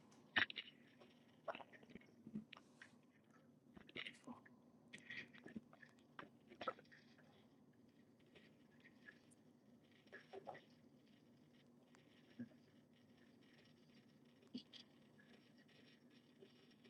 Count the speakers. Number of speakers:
0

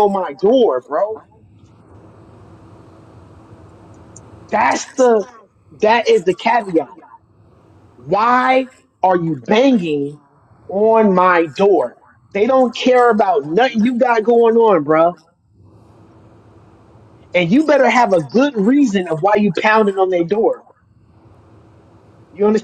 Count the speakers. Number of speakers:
1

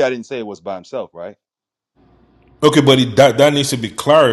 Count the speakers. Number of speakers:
2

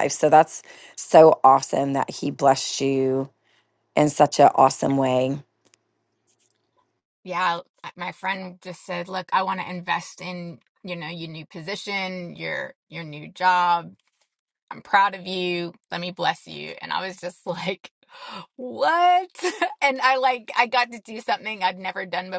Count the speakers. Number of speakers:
2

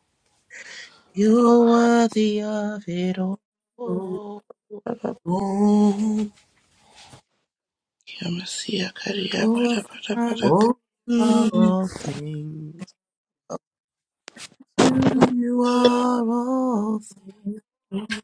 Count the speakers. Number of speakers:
3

